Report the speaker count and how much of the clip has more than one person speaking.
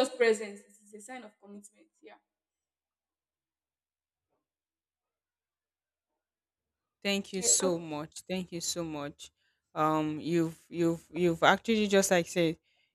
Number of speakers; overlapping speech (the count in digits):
2, about 3%